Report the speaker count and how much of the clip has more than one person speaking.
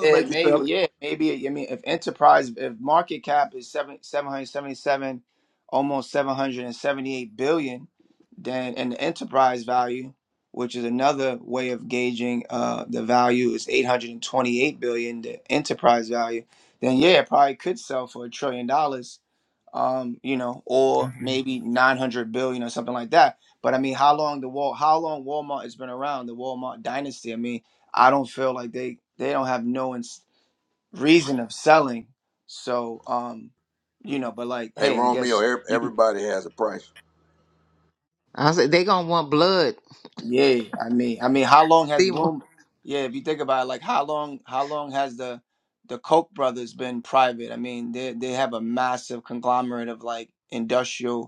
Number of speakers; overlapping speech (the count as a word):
three, about 3%